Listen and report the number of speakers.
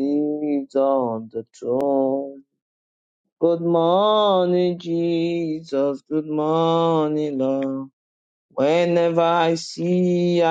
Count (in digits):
1